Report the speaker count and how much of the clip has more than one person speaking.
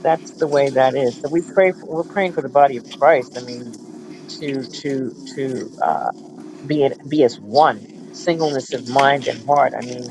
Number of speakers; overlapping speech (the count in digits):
1, no overlap